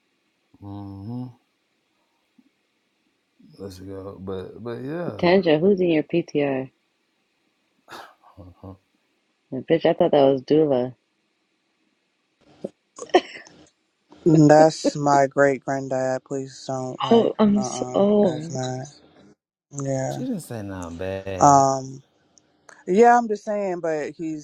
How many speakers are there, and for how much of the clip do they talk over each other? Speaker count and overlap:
three, about 8%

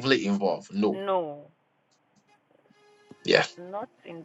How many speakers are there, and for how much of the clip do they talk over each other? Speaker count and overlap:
two, about 1%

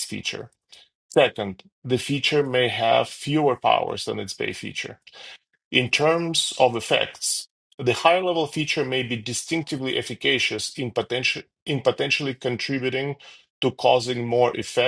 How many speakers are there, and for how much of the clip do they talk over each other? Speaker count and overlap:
one, no overlap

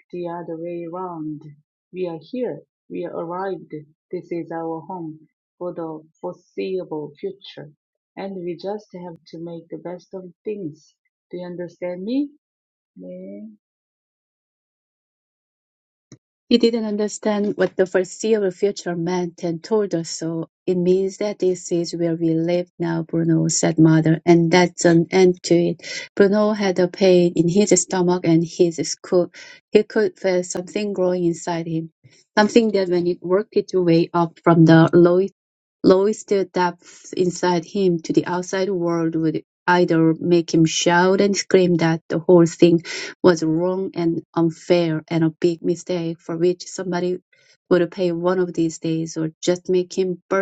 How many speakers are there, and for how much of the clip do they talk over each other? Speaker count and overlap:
two, no overlap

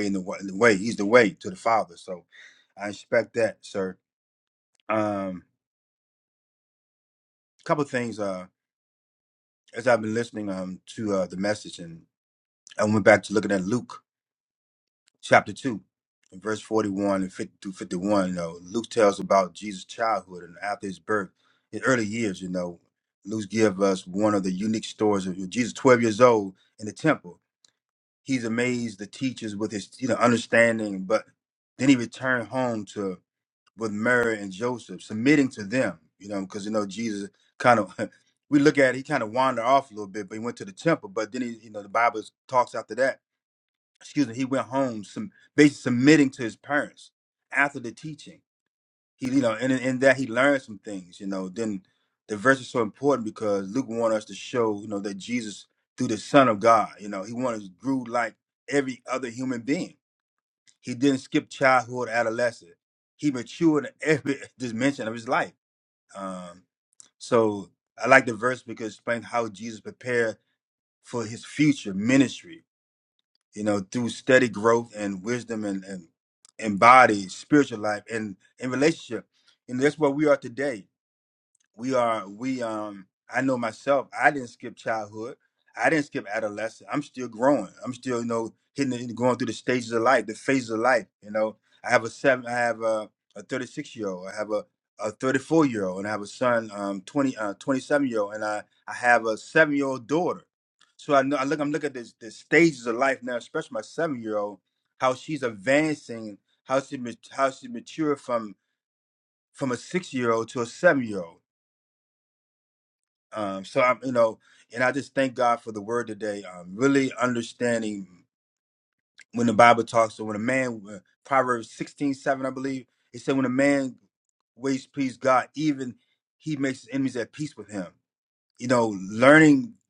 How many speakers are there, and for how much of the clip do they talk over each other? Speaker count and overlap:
one, no overlap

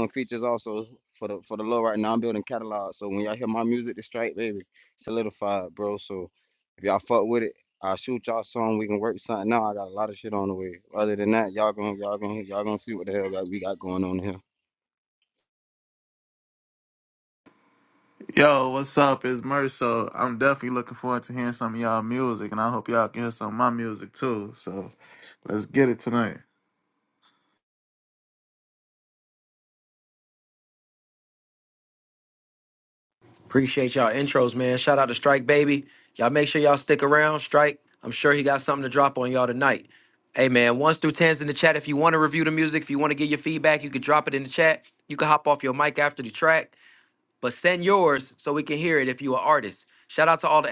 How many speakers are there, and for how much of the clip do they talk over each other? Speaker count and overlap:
three, no overlap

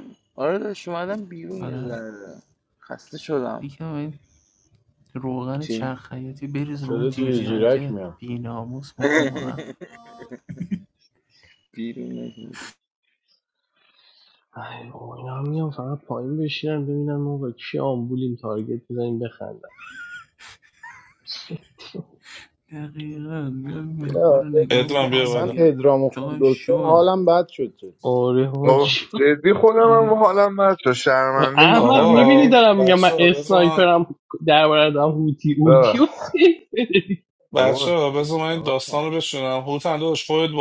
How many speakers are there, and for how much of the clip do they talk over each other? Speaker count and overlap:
six, about 20%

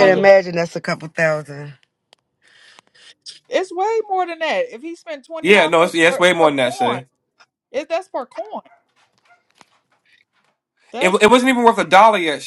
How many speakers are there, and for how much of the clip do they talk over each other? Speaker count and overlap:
three, about 16%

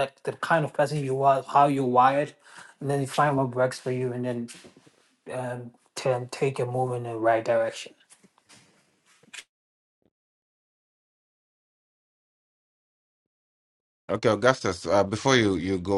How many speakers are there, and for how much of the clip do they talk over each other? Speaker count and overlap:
two, no overlap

